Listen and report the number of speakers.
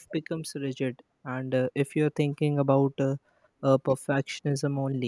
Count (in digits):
1